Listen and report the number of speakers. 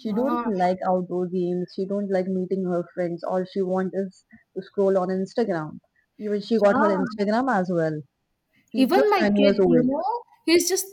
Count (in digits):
2